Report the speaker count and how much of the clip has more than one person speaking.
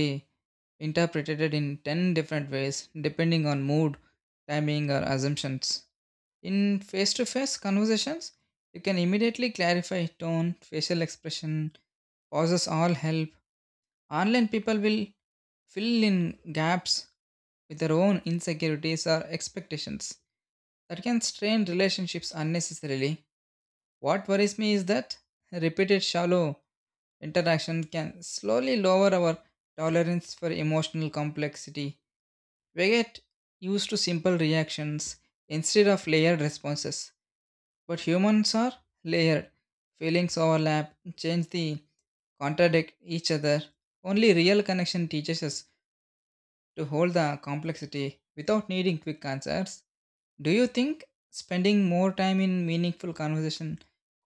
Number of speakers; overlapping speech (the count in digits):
1, no overlap